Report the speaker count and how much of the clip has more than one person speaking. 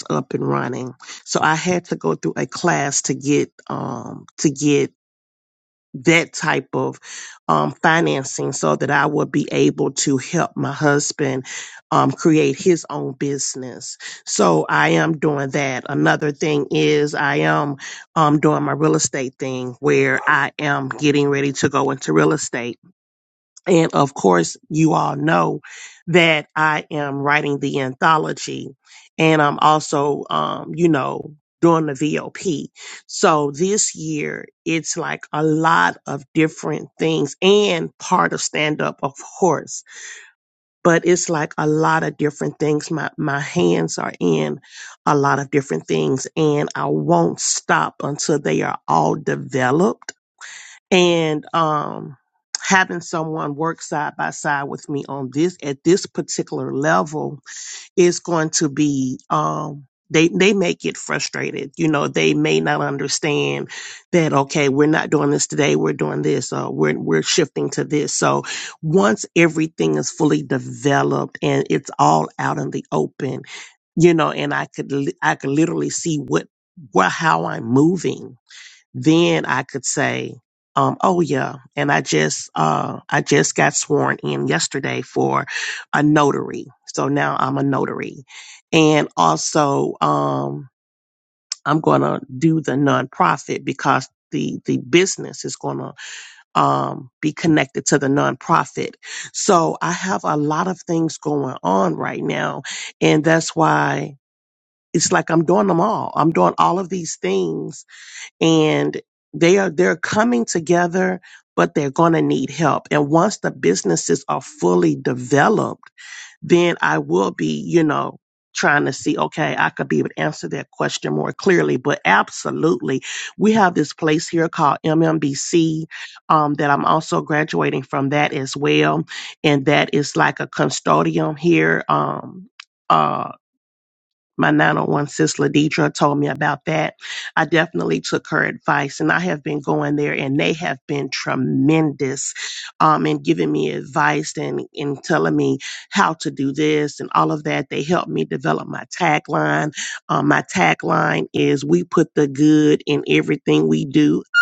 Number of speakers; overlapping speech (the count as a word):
one, no overlap